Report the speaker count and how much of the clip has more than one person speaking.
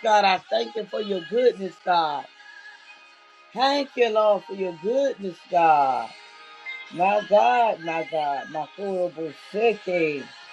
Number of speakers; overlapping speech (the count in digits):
1, no overlap